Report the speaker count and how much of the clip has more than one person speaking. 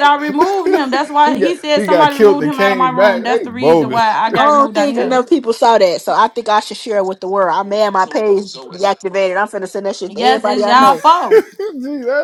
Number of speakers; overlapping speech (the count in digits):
3, about 38%